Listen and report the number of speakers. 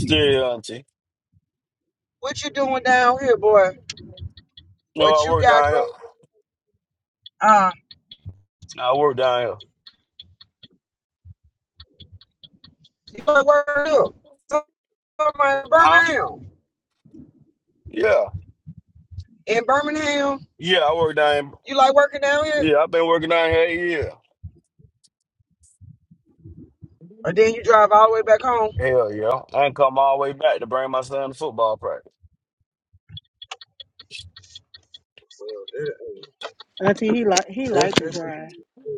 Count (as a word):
three